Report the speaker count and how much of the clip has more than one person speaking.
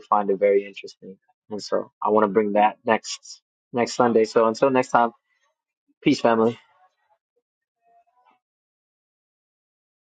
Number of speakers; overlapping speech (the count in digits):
1, no overlap